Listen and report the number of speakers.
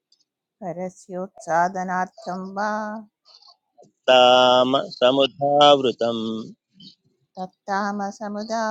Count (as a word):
two